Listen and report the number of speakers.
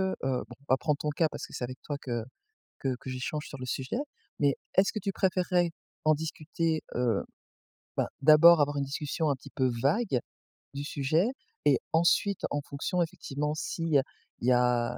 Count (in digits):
1